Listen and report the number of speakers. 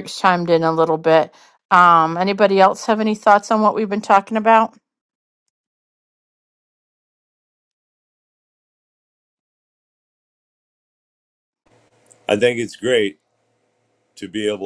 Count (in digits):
2